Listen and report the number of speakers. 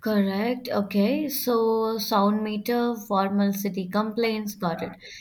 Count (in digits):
1